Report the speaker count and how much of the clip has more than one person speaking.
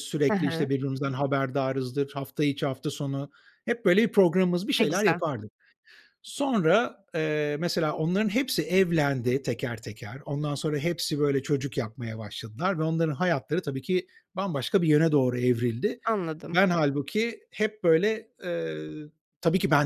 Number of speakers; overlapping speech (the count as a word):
two, about 4%